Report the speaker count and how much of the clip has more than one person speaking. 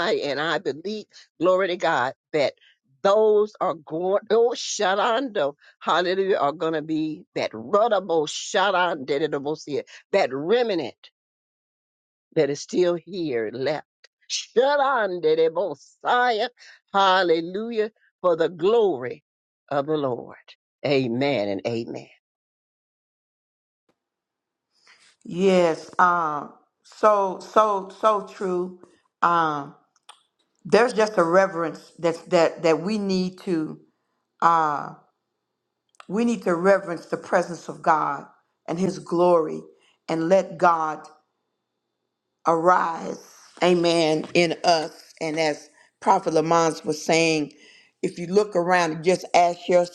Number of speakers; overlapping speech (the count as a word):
two, no overlap